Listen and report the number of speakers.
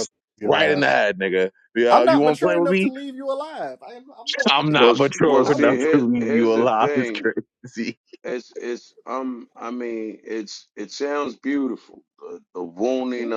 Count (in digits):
3